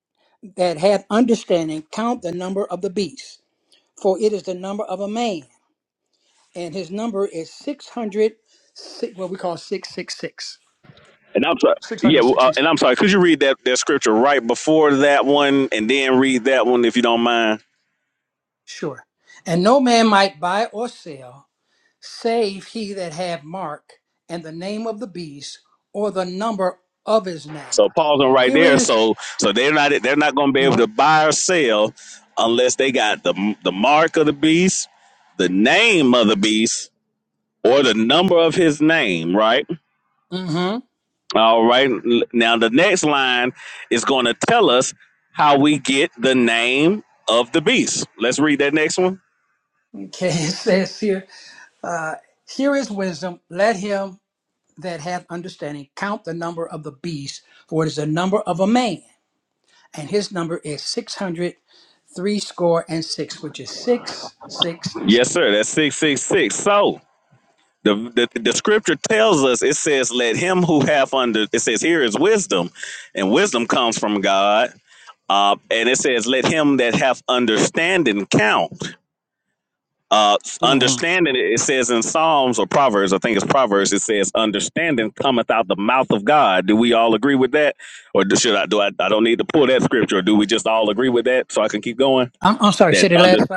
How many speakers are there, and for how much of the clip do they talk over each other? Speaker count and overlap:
two, about 3%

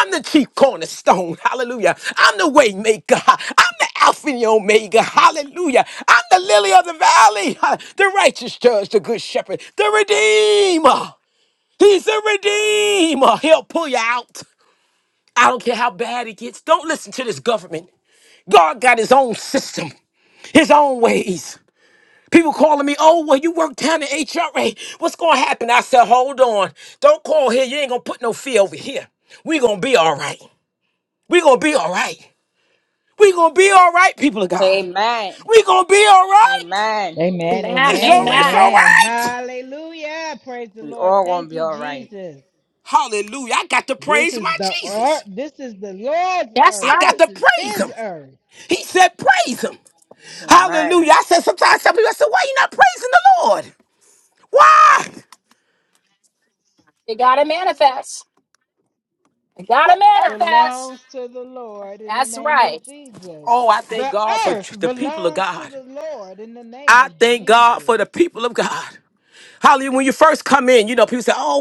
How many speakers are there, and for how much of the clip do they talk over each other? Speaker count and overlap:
four, about 14%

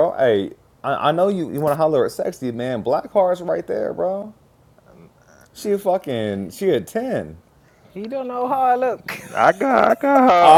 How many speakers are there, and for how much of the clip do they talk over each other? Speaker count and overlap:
three, about 2%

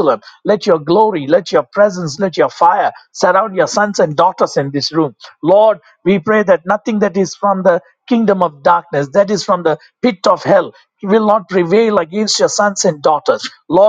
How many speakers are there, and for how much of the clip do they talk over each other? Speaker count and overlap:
one, no overlap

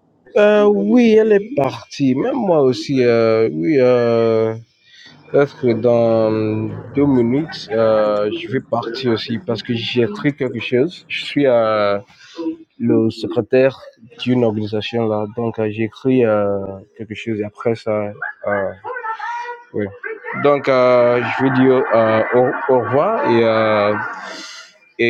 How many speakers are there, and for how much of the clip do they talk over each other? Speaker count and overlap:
one, no overlap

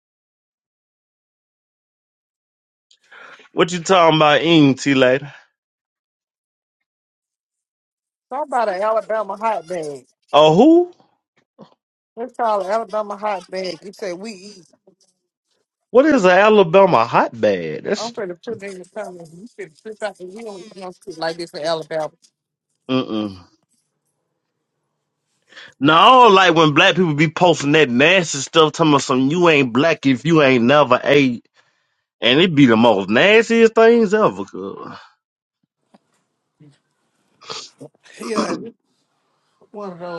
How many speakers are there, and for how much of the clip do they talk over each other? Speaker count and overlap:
two, under 1%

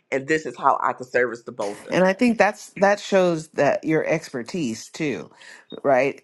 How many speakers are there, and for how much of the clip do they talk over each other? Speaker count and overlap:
two, about 1%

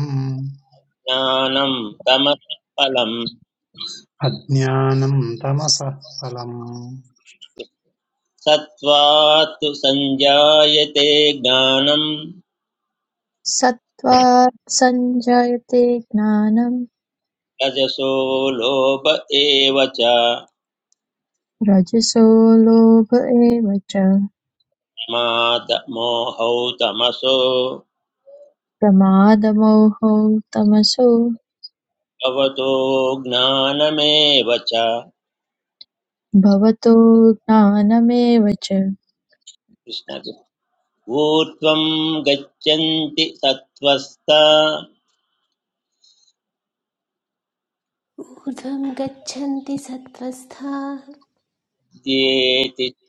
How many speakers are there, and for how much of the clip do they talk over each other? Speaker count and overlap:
four, no overlap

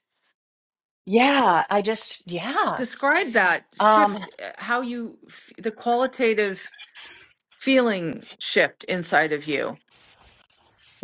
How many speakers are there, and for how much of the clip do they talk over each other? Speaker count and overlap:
two, about 5%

